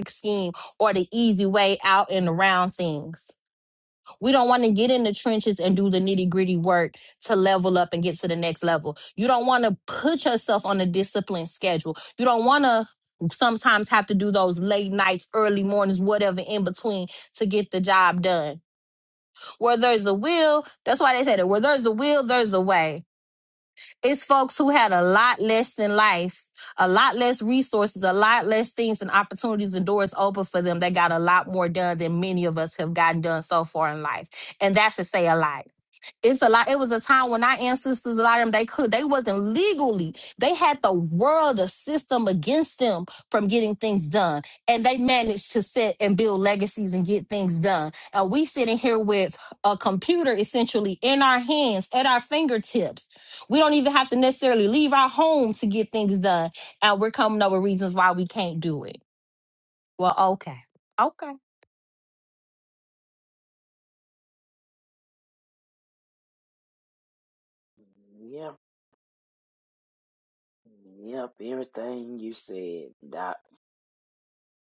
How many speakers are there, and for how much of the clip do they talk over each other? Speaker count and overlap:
2, no overlap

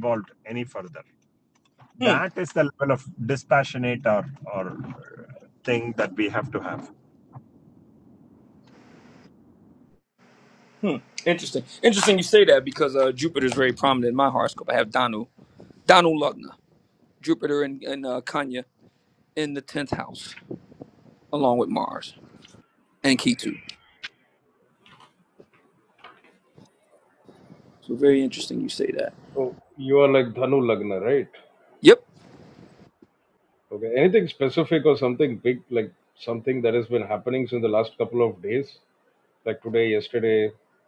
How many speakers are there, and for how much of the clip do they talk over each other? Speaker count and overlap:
3, under 1%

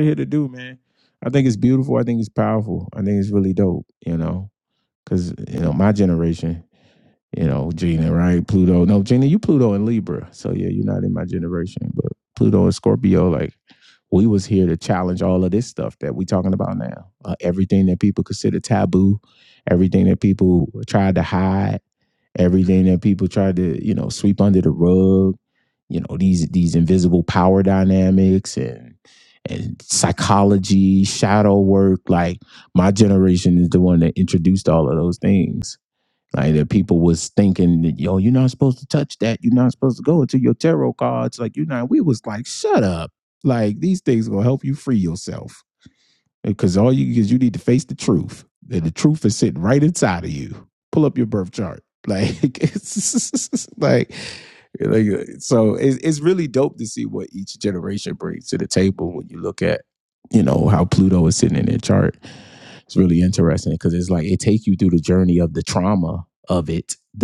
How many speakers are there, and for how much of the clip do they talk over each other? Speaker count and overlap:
1, no overlap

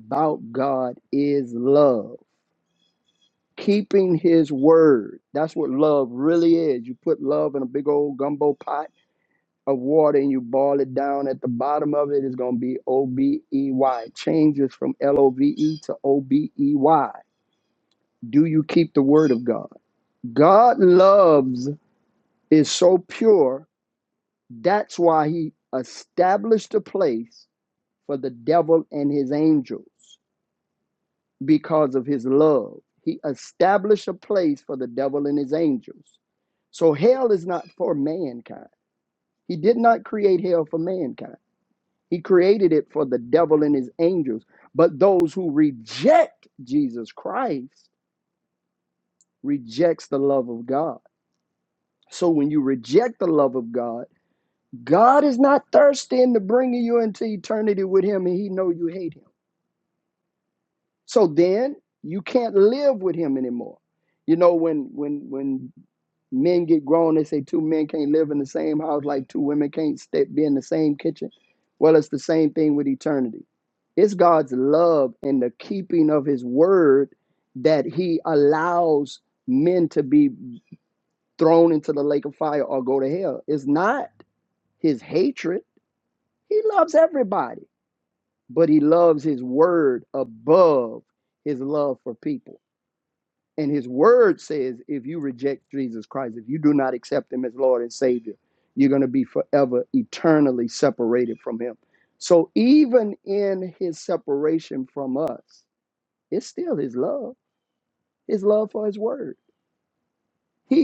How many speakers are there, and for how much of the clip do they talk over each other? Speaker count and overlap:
1, no overlap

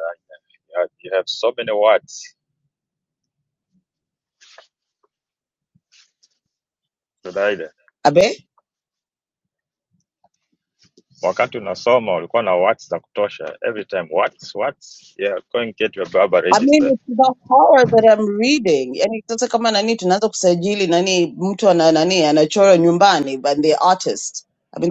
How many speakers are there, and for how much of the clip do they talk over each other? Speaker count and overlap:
2, about 2%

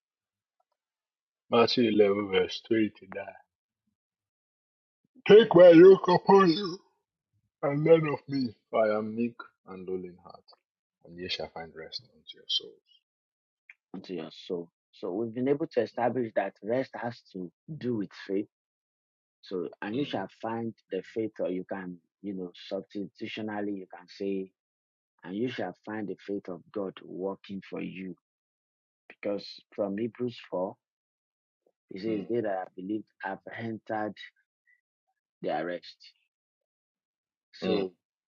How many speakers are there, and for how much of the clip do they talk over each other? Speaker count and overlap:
2, about 2%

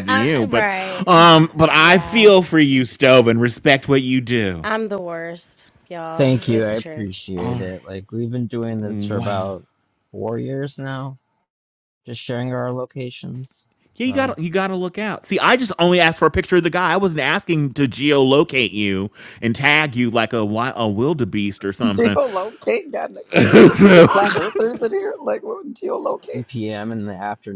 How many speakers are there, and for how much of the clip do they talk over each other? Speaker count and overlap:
4, about 13%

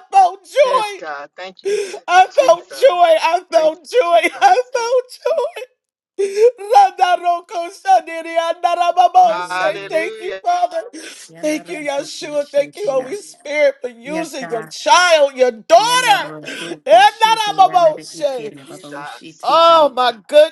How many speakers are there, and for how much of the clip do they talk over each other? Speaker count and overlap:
3, about 35%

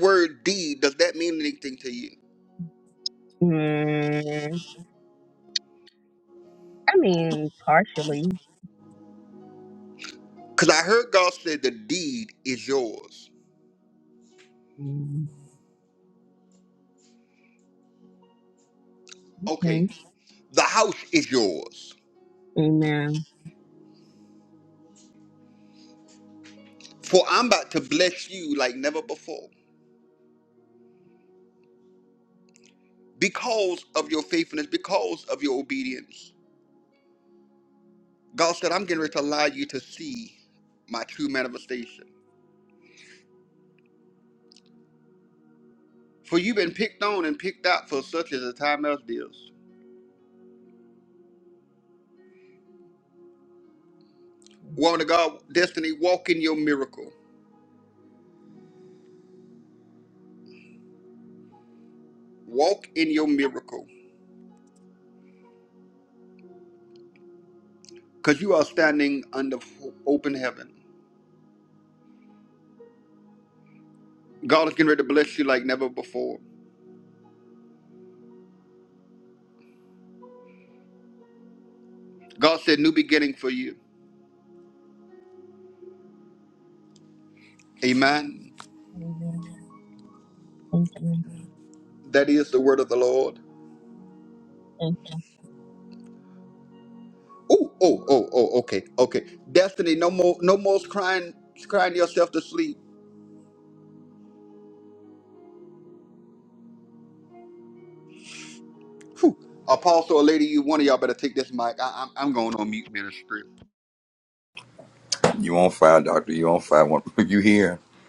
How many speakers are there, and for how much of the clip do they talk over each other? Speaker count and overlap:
3, under 1%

